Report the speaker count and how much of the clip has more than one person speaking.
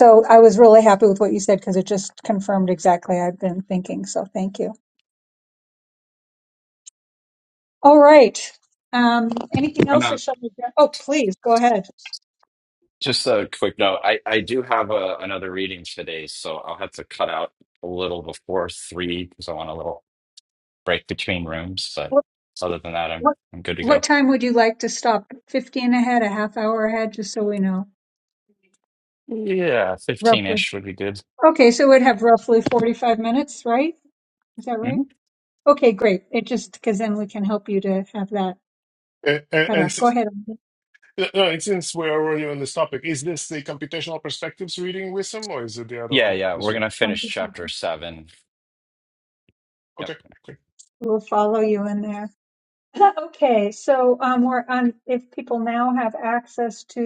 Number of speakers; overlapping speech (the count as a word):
three, about 4%